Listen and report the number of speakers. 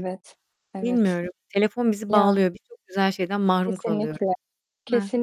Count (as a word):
two